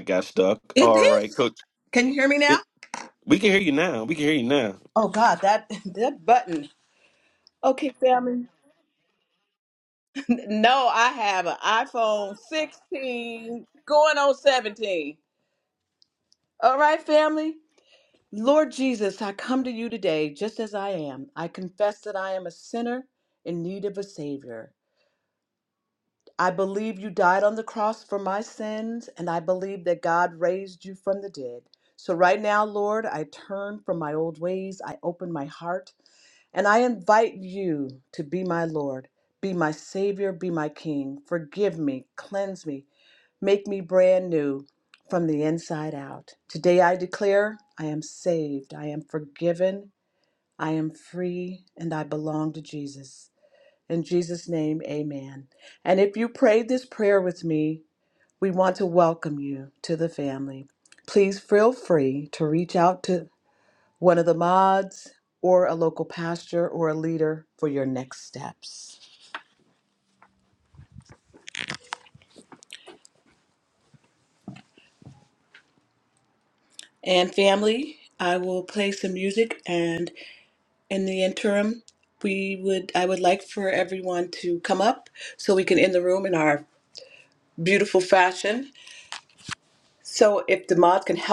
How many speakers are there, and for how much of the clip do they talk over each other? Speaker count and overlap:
two, about 1%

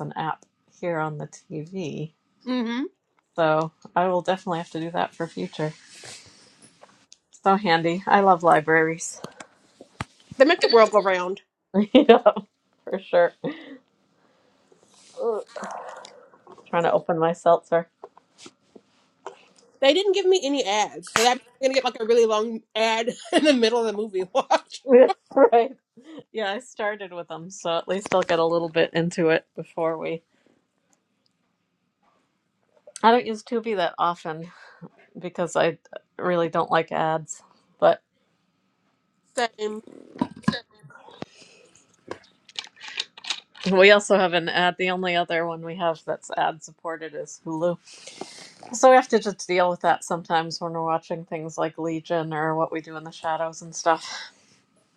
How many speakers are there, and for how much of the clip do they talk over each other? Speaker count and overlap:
two, no overlap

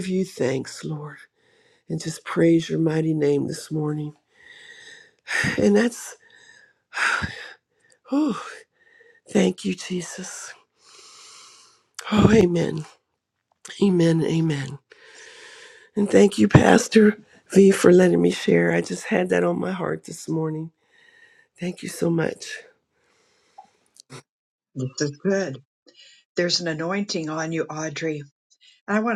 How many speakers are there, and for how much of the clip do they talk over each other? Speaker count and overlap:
two, no overlap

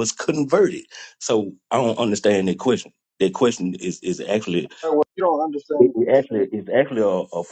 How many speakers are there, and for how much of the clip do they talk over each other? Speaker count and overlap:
two, about 9%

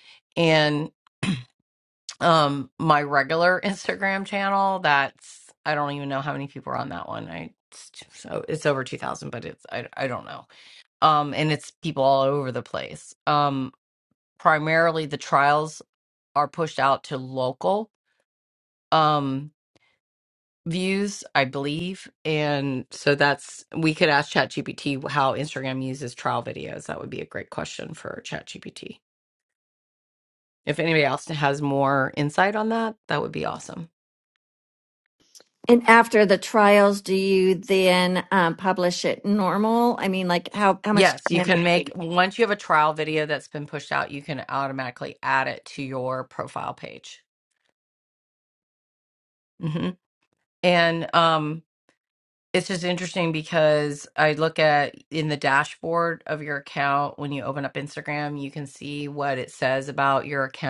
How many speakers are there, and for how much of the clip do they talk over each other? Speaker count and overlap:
two, about 2%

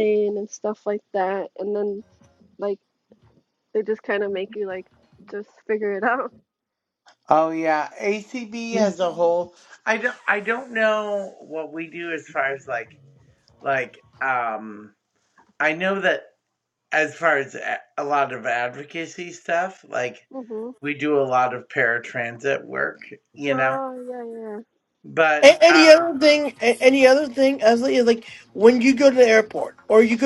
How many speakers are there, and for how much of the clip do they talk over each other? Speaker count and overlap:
three, about 3%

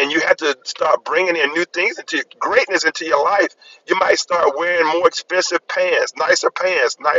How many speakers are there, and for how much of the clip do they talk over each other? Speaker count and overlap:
one, no overlap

